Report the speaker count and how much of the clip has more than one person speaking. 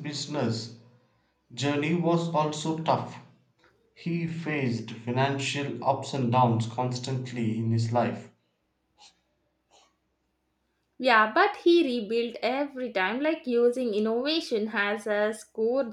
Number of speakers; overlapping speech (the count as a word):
two, no overlap